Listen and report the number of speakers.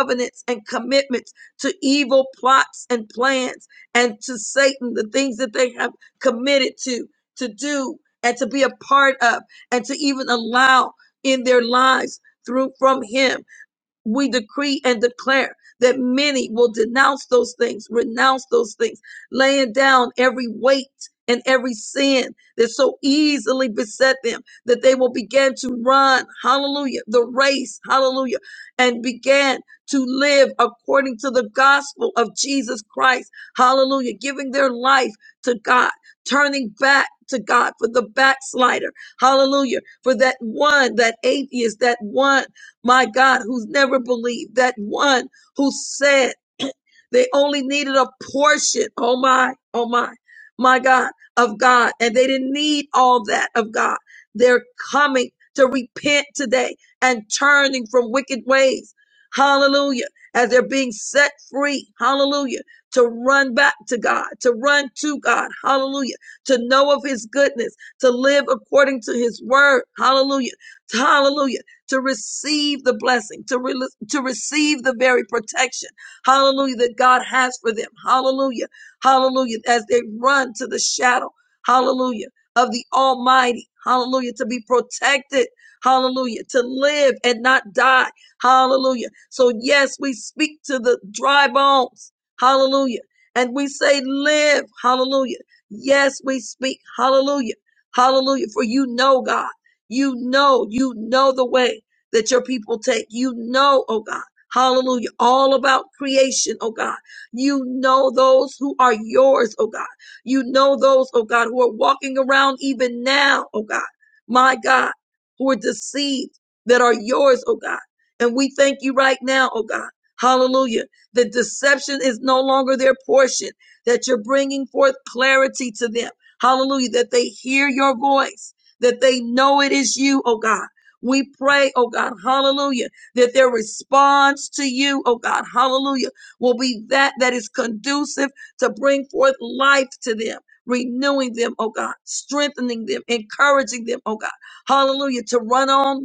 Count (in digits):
1